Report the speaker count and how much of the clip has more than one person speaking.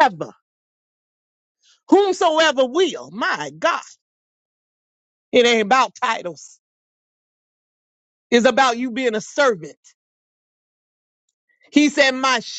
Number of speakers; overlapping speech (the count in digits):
1, no overlap